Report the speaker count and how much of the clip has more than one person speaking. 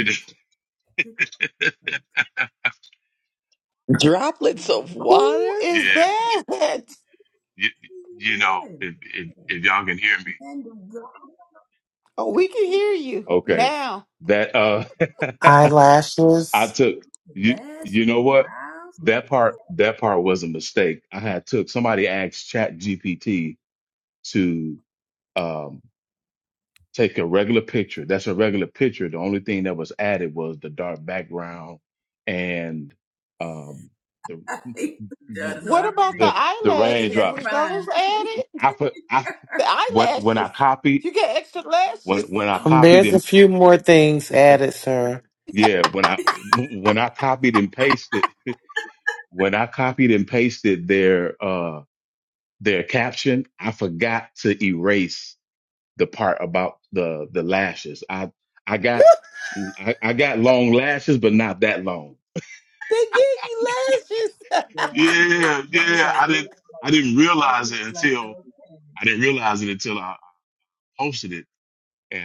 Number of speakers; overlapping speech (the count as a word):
five, about 16%